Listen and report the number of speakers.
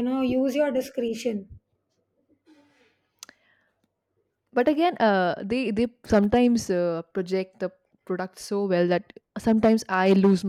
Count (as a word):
two